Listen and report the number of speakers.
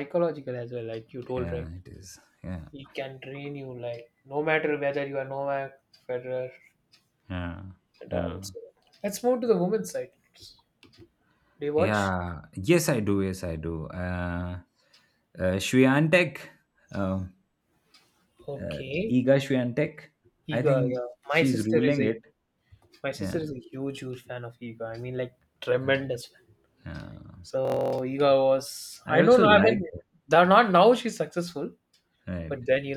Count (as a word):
two